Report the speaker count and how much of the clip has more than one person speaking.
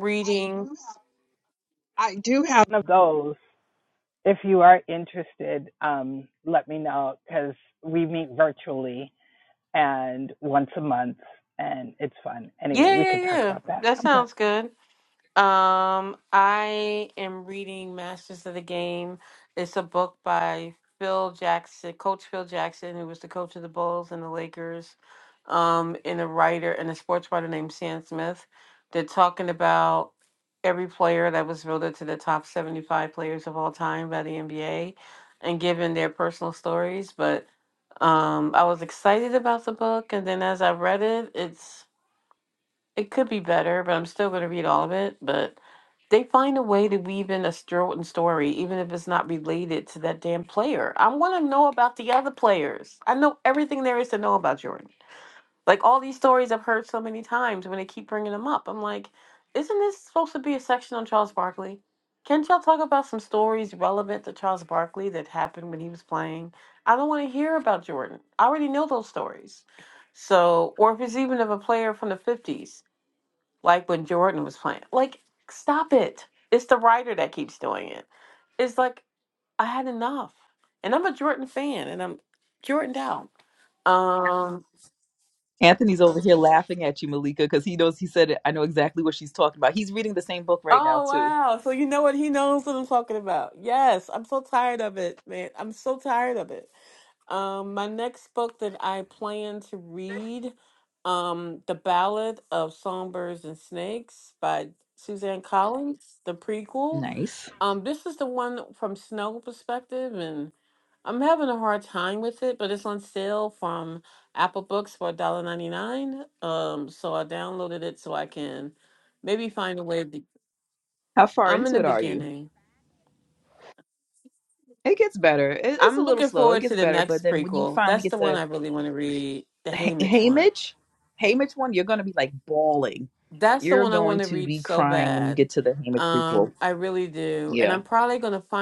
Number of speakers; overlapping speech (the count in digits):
3, about 7%